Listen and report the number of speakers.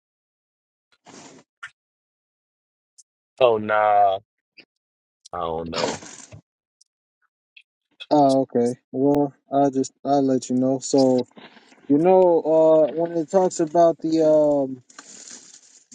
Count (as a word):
two